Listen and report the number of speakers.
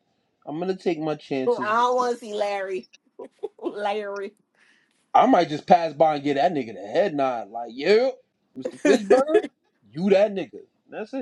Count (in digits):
2